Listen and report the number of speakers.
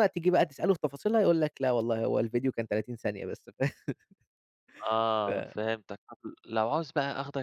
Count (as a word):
two